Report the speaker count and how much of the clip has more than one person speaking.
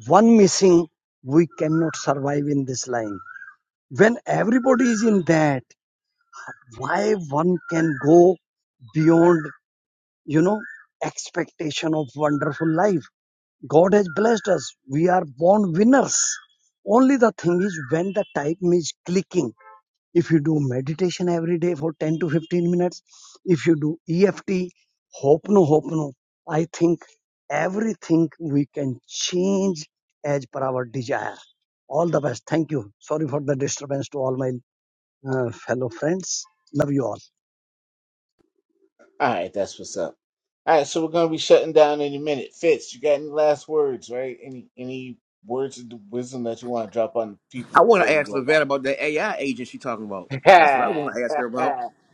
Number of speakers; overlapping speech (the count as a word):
three, about 3%